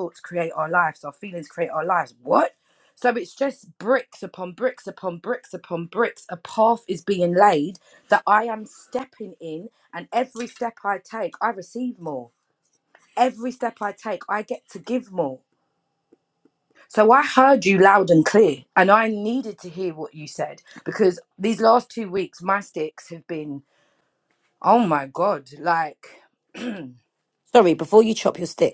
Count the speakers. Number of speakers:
two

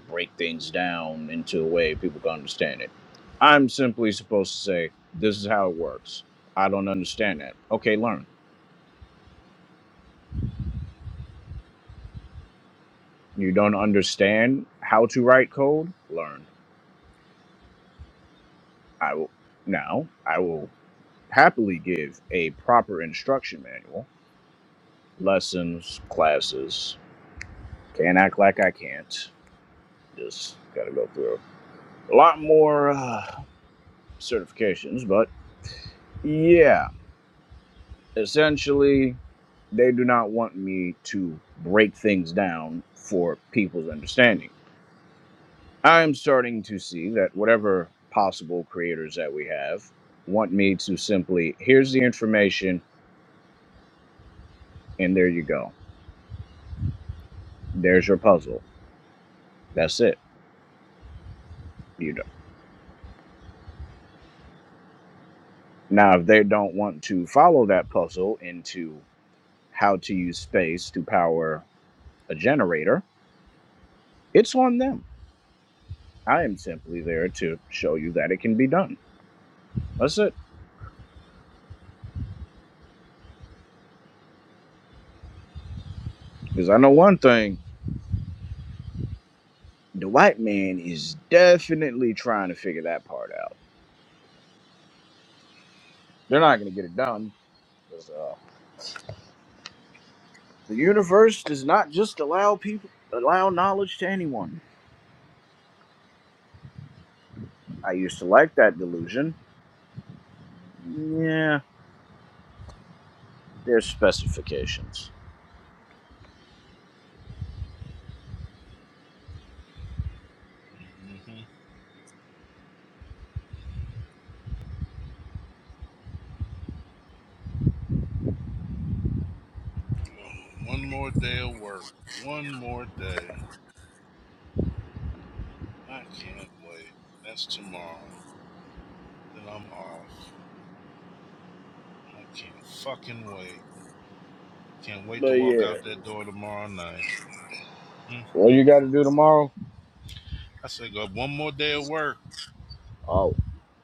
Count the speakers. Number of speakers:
two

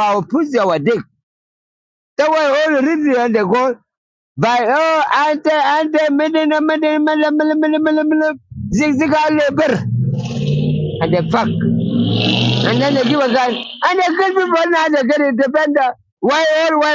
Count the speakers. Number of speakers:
one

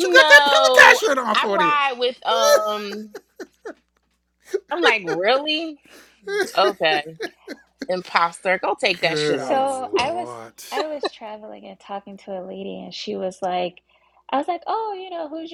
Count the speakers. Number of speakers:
three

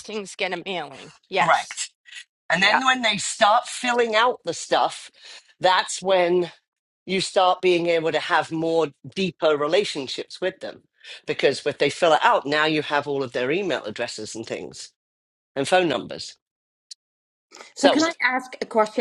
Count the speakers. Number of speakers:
three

